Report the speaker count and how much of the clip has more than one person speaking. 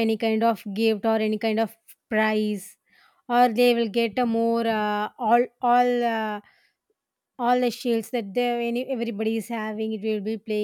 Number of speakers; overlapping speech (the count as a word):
one, no overlap